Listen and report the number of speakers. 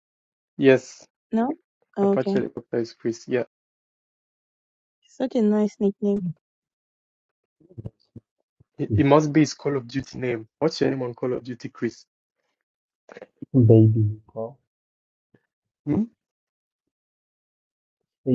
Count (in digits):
3